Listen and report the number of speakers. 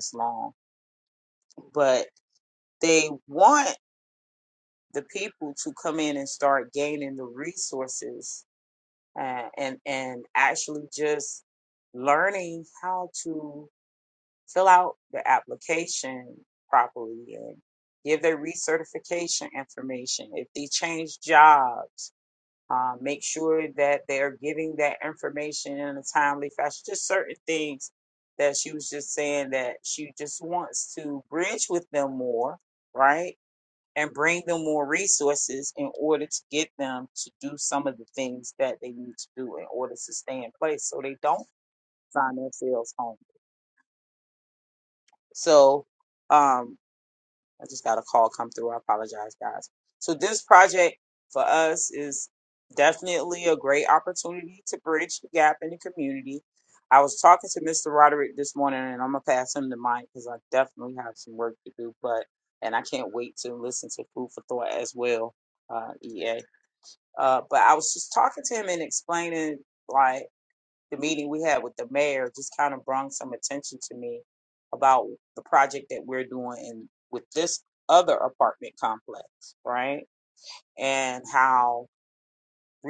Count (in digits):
1